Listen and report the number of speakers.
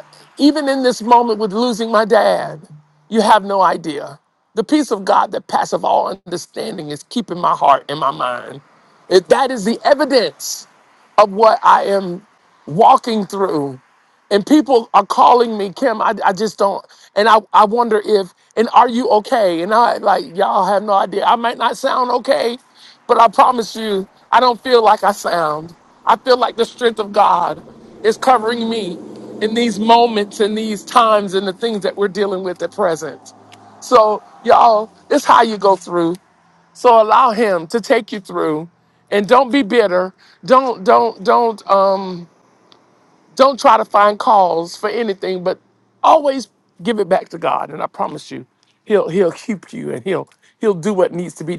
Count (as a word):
one